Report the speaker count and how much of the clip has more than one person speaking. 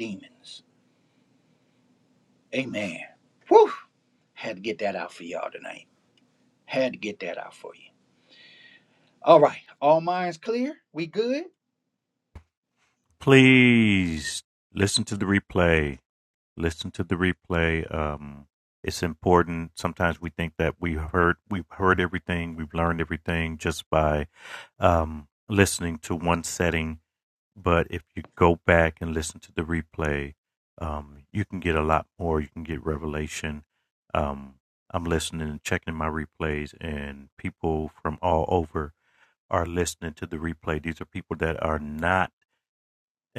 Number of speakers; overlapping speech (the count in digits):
2, no overlap